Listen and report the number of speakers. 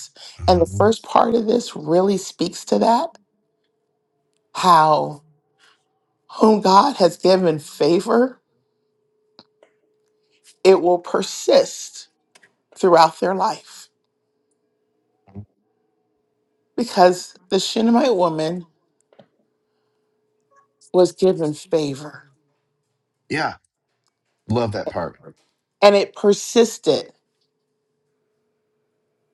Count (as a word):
two